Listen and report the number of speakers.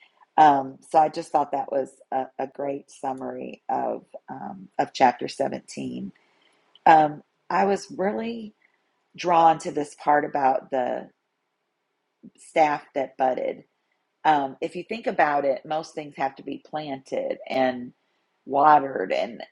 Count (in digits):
1